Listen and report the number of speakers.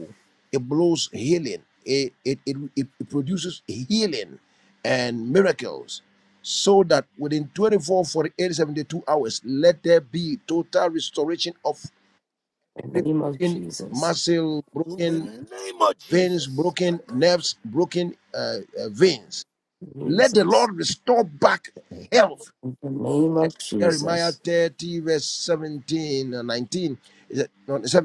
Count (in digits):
3